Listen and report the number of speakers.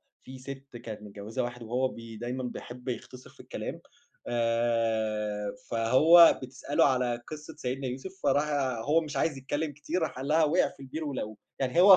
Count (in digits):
1